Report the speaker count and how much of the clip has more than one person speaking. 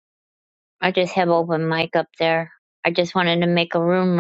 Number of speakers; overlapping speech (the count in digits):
1, no overlap